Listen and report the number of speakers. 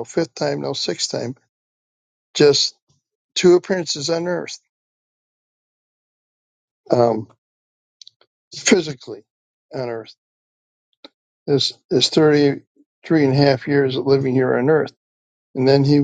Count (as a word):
one